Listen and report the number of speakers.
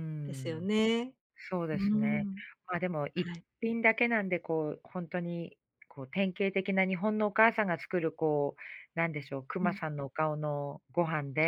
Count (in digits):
2